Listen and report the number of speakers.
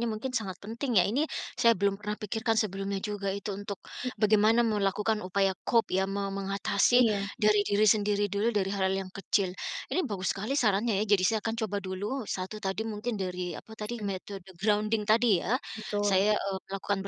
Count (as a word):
two